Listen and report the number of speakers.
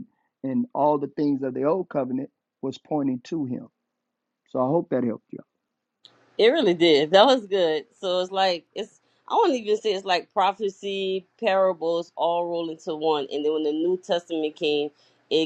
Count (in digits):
2